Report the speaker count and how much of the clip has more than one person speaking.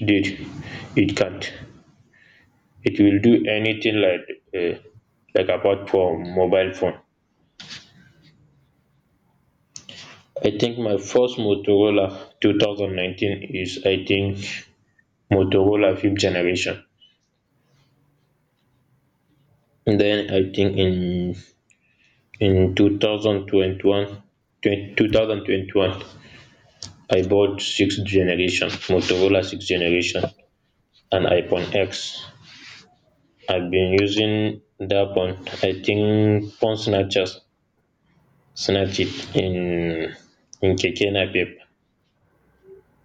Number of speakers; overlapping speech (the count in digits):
1, no overlap